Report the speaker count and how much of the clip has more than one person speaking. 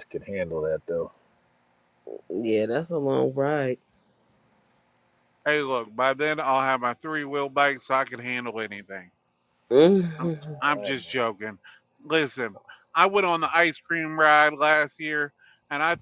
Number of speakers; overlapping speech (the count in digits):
3, about 4%